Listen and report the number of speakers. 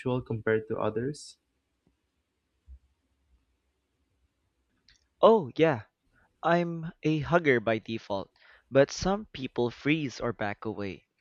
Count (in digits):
2